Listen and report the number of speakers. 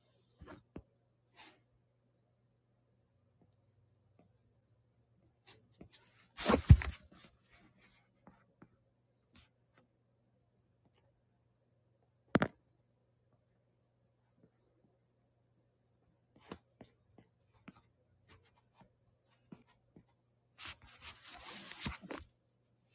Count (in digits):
0